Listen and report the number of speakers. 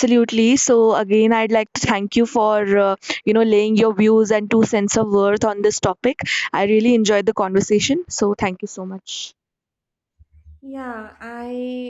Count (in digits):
2